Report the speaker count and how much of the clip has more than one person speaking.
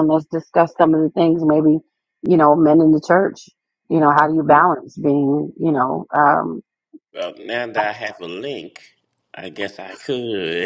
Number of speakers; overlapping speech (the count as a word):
two, no overlap